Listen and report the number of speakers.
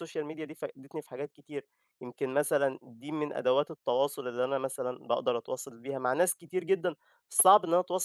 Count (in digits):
1